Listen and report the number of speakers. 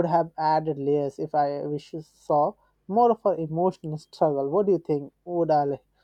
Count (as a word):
one